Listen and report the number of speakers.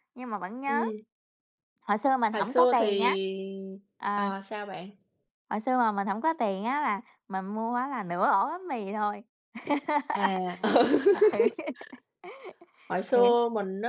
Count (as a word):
two